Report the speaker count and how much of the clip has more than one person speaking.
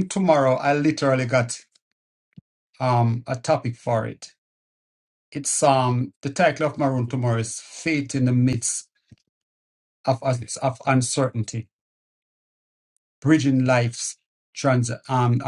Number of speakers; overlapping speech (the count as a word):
one, no overlap